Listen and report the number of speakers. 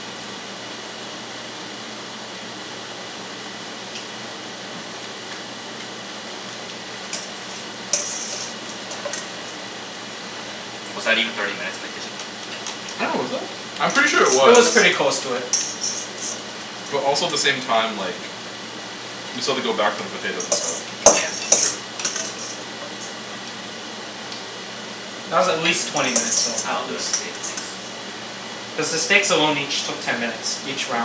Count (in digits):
3